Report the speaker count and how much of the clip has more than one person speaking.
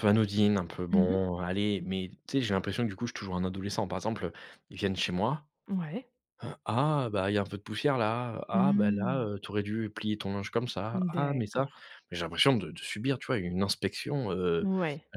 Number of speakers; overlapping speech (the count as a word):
two, about 12%